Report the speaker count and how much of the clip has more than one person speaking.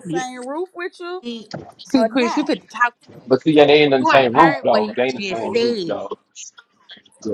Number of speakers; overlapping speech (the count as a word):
three, about 38%